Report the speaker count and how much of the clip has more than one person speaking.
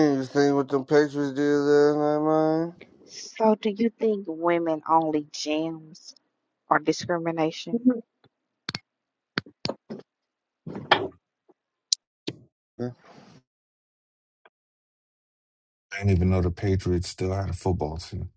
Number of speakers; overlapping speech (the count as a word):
three, no overlap